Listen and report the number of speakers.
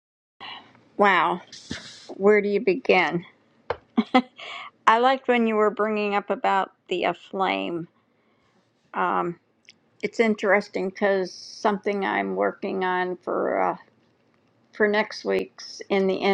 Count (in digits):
1